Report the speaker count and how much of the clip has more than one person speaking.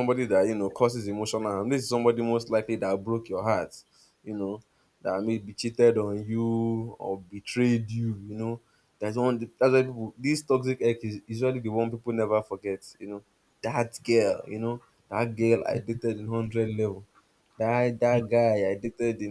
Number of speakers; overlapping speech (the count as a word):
one, no overlap